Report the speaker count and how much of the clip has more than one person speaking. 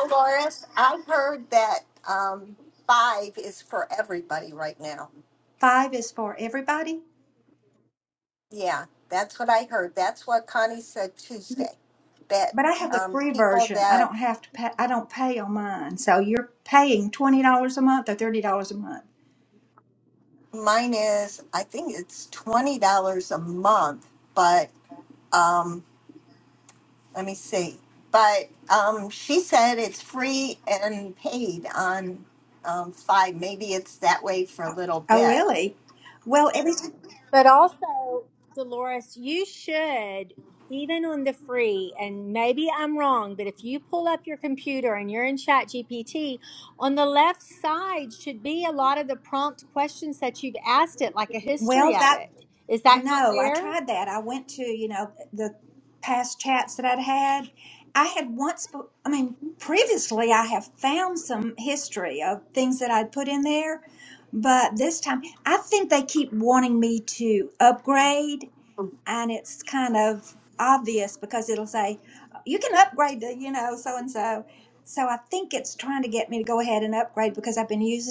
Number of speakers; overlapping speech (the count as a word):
three, about 4%